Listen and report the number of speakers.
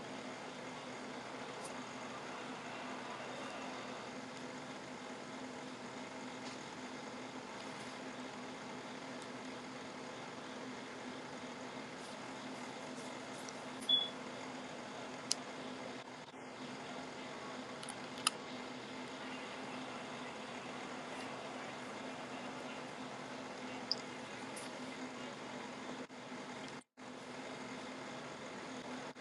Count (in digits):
0